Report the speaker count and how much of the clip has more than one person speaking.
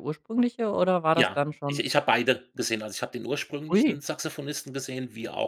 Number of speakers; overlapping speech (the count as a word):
two, about 17%